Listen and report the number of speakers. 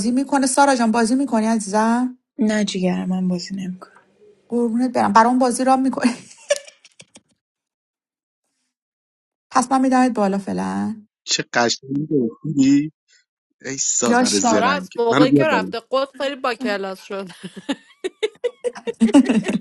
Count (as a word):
four